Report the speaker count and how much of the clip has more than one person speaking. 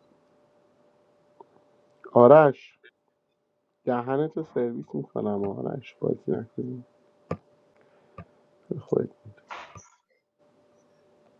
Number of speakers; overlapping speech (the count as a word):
one, no overlap